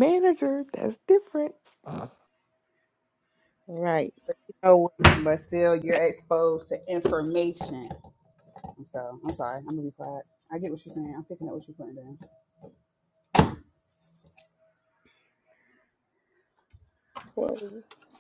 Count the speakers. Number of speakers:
three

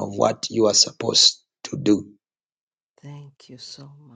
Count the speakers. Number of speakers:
two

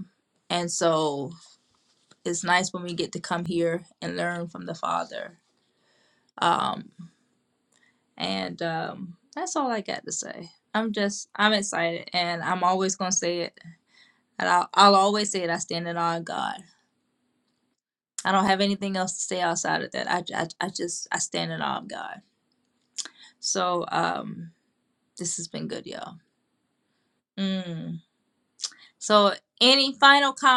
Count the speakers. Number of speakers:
one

